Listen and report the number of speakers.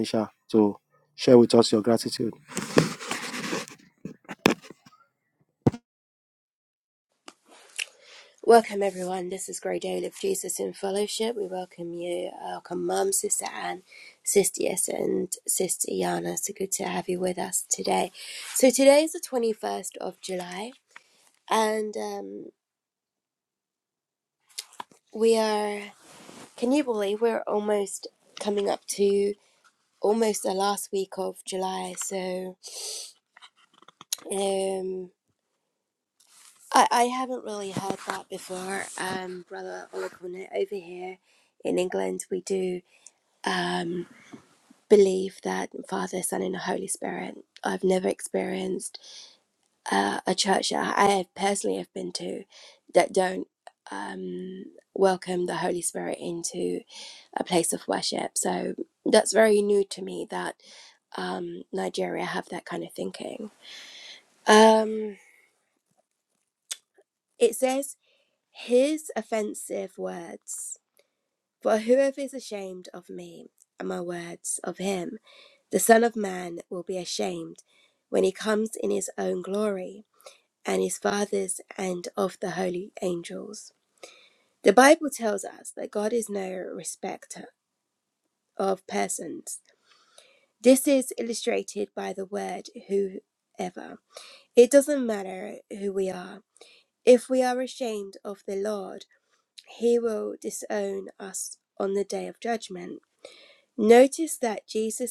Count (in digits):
2